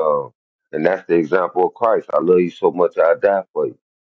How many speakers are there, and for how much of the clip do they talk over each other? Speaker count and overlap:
1, no overlap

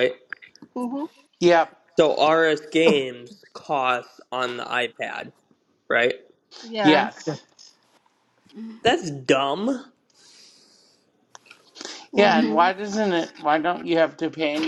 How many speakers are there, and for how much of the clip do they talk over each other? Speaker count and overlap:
3, about 5%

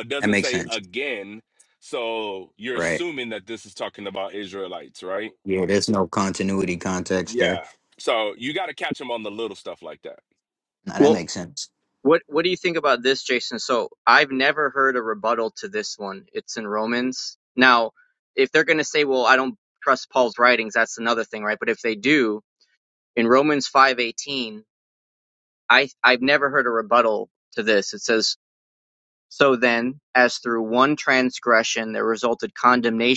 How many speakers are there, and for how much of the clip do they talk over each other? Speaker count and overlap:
3, about 4%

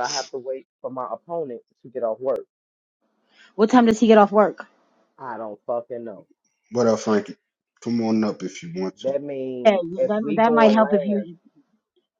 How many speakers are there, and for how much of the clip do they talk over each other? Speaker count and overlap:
3, about 14%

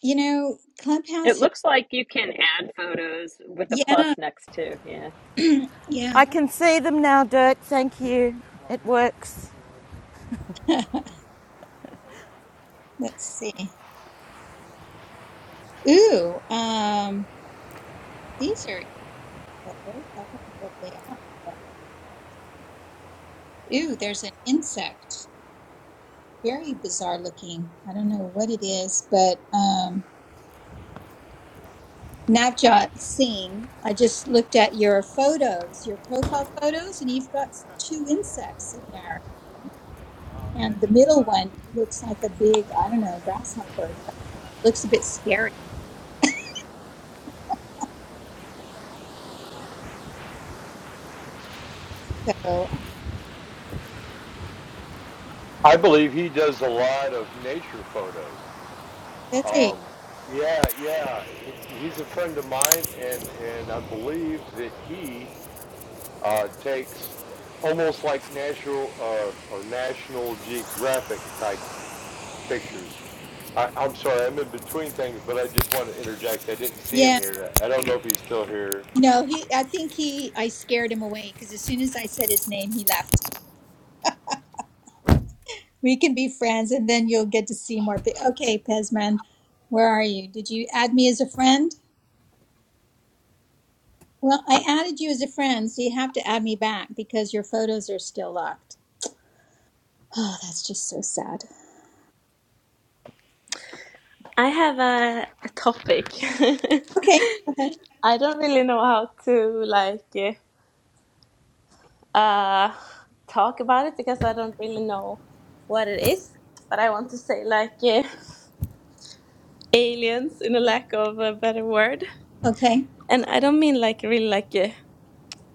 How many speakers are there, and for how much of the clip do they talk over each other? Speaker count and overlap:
5, about 1%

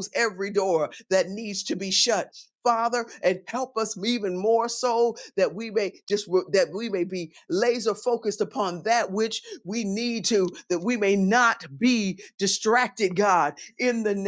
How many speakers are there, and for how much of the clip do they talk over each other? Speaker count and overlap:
1, no overlap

